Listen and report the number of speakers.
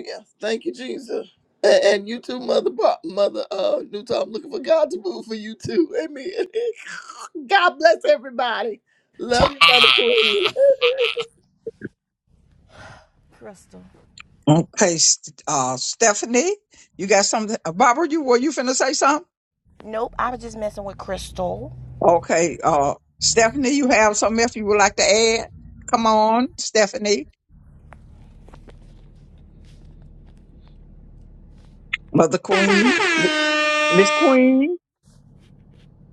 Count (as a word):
three